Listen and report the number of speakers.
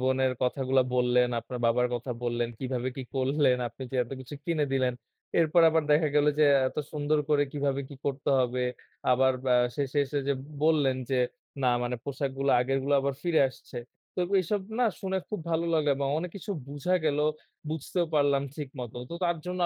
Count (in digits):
1